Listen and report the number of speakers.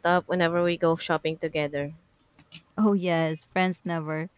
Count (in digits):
2